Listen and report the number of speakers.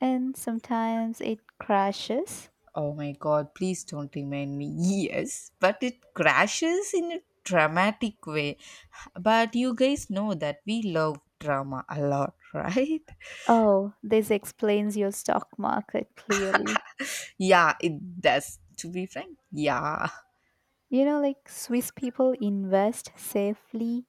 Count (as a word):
two